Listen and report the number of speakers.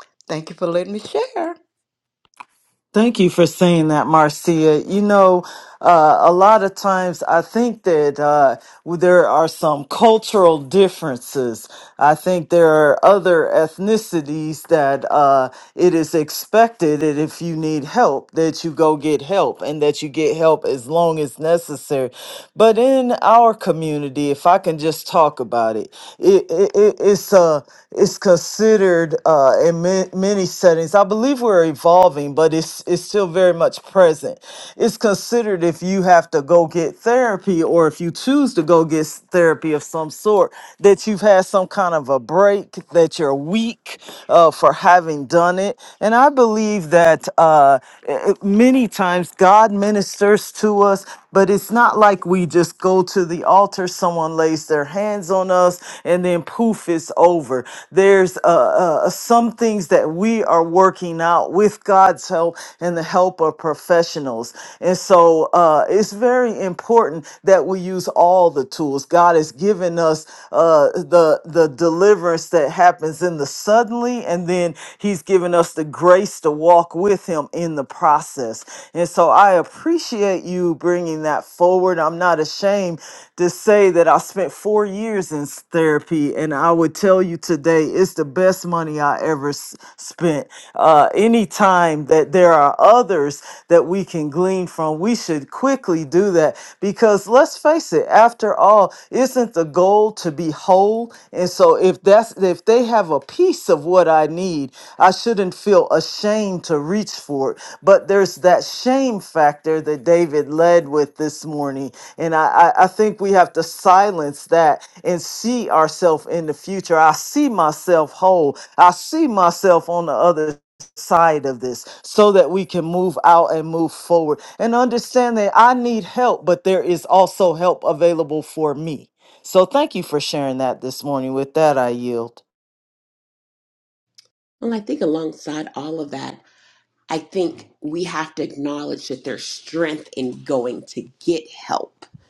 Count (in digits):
3